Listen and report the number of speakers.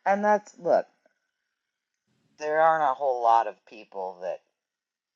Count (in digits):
1